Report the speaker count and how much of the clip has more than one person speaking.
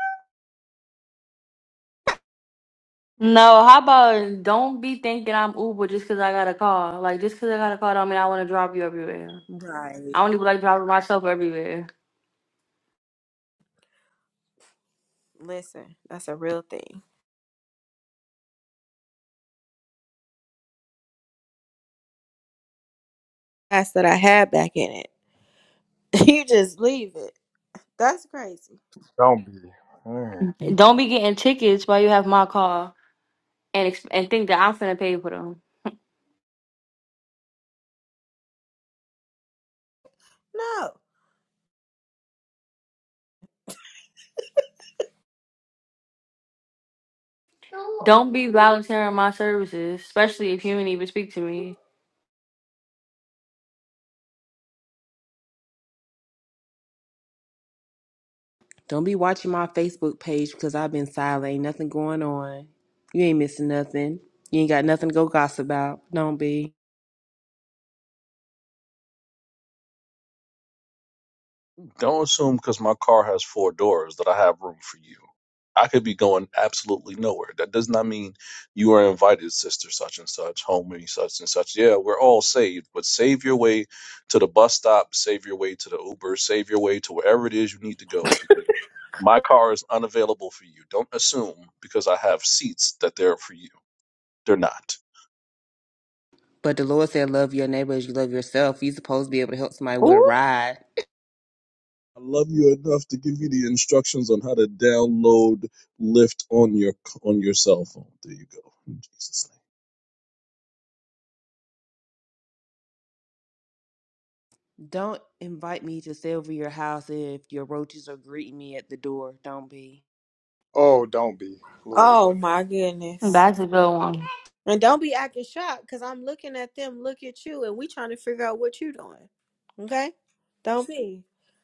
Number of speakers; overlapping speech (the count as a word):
five, about 1%